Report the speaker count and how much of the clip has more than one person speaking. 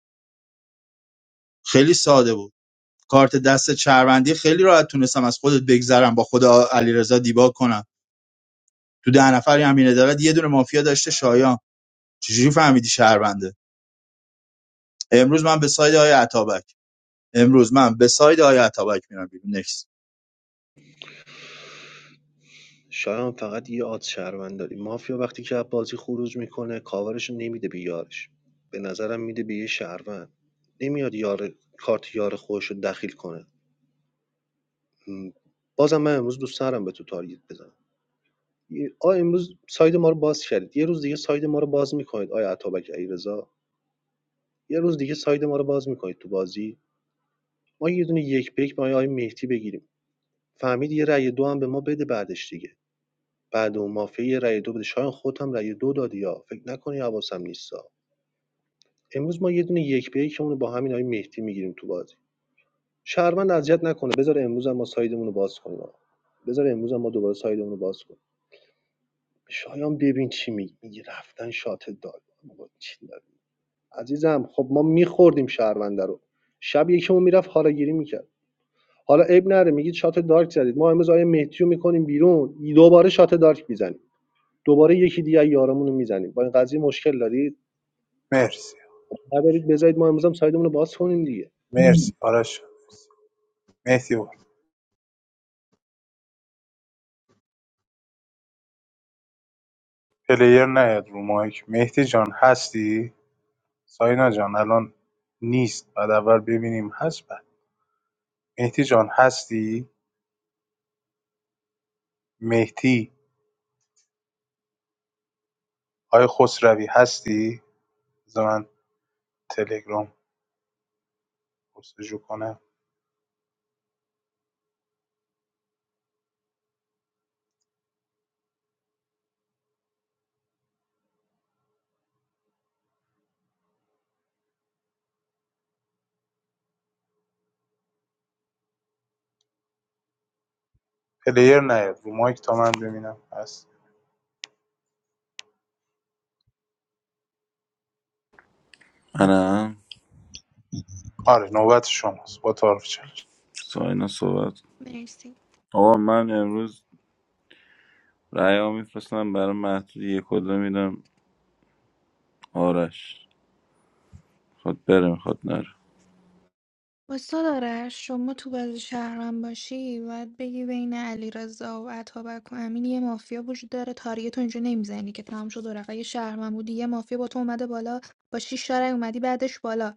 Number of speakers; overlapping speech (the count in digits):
5, no overlap